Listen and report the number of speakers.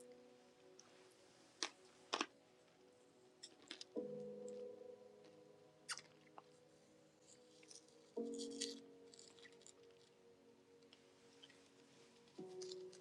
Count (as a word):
zero